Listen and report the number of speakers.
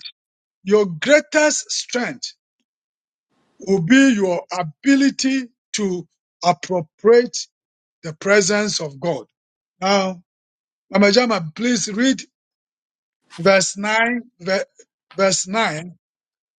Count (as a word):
one